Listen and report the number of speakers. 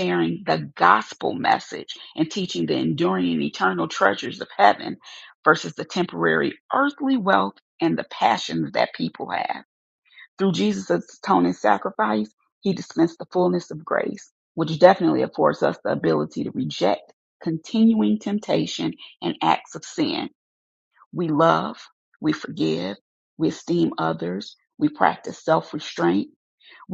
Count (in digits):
1